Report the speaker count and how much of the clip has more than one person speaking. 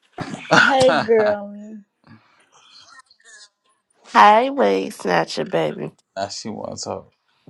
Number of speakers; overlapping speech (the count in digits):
3, about 6%